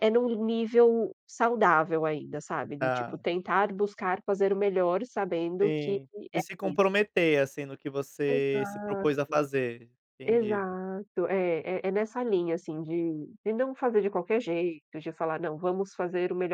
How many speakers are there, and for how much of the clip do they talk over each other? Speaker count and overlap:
2, about 14%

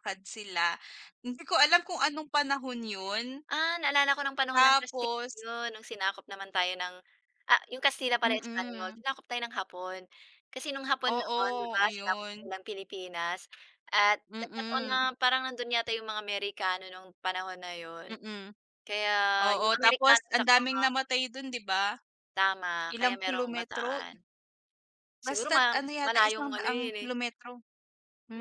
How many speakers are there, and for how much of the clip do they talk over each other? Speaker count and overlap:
2, about 29%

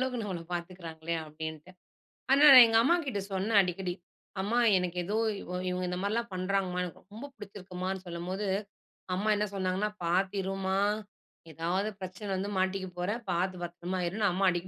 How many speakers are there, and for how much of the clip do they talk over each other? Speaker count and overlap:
1, no overlap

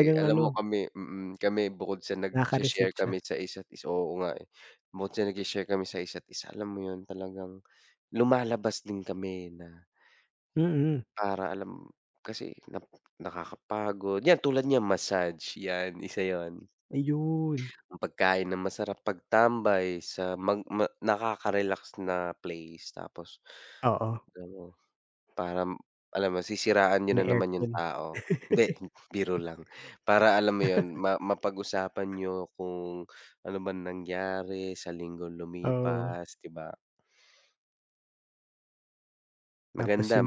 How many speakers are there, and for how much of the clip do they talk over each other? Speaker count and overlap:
2, about 7%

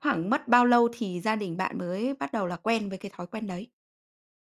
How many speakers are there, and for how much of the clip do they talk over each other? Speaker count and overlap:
1, no overlap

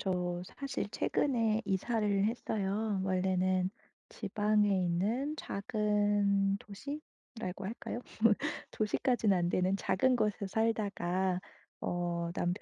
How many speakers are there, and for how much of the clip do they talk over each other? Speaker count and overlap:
1, no overlap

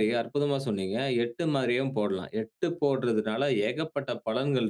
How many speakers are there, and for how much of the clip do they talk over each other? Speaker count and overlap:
1, no overlap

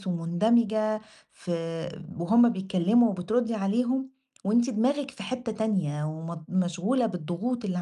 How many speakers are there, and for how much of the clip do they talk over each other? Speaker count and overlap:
1, no overlap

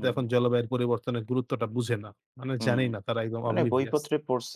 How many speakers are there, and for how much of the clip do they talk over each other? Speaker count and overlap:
2, about 23%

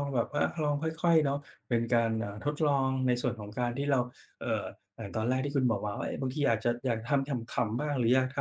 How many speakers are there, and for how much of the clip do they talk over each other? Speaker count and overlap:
1, no overlap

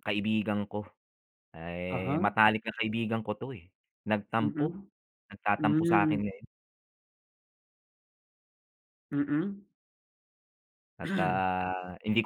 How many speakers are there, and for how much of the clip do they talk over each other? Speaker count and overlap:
2, about 11%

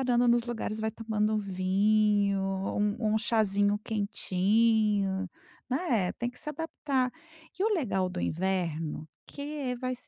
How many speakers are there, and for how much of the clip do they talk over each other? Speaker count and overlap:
1, no overlap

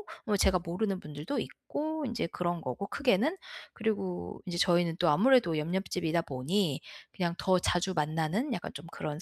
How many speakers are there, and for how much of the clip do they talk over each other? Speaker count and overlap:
1, no overlap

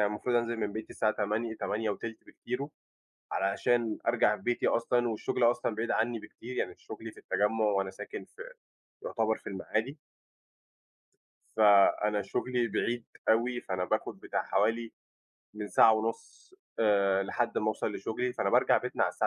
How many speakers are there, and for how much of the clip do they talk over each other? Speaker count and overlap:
1, no overlap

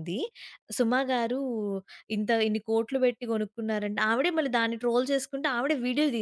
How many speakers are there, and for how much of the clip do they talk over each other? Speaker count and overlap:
1, no overlap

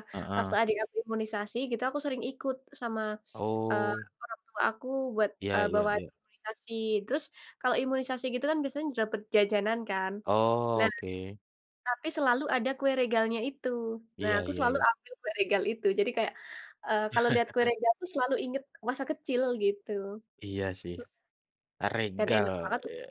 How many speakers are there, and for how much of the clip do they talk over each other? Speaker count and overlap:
2, about 12%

